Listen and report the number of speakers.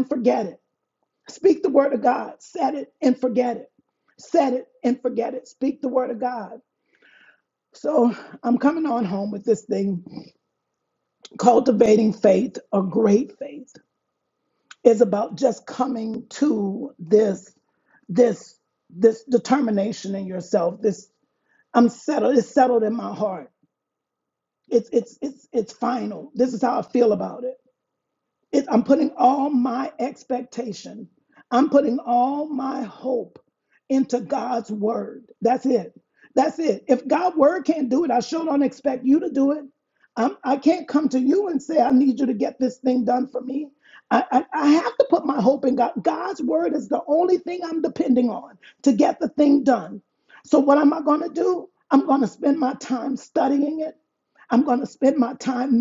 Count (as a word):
one